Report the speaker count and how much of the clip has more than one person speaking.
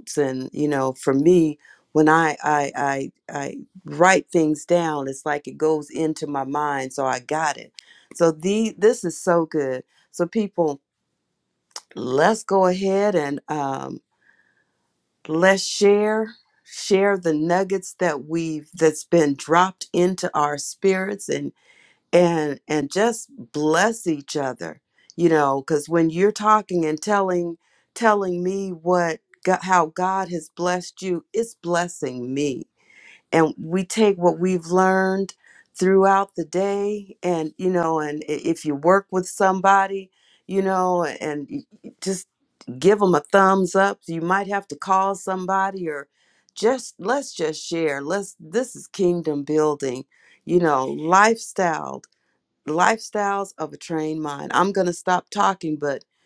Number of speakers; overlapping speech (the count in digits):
1, no overlap